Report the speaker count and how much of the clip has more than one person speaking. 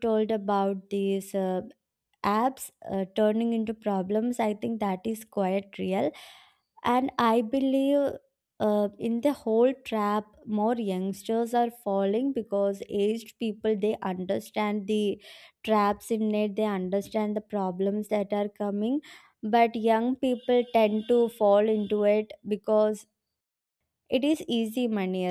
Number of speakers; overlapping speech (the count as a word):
one, no overlap